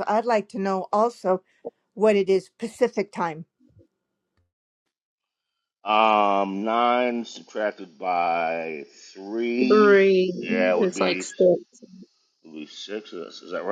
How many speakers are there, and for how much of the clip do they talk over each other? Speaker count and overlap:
3, about 6%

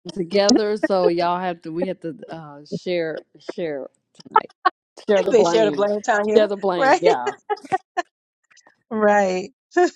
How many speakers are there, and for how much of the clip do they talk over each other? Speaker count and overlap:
2, about 10%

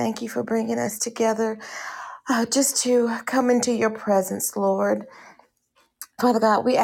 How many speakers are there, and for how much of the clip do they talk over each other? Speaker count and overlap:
1, no overlap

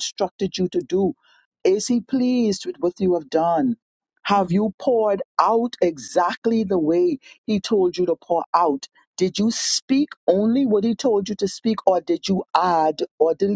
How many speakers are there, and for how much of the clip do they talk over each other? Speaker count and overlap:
1, no overlap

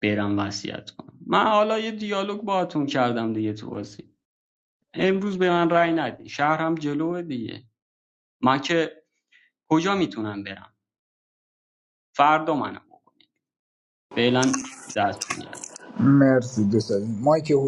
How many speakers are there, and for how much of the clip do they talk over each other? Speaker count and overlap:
2, no overlap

